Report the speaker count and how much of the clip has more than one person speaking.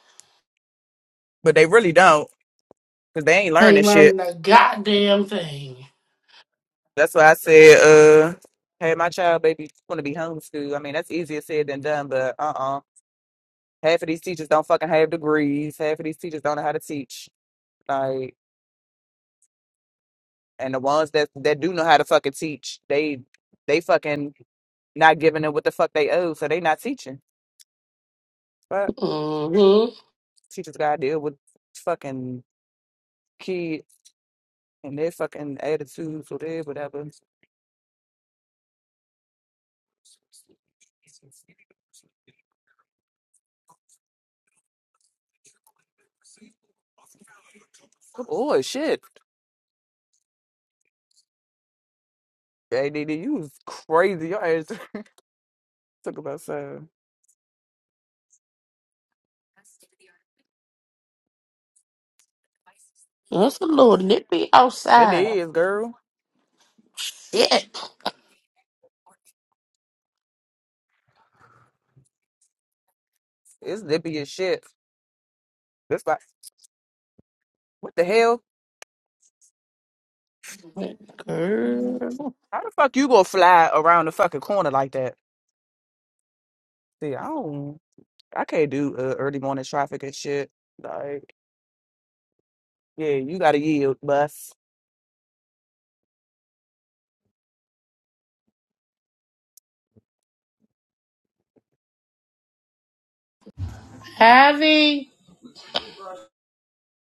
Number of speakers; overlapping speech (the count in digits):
2, about 1%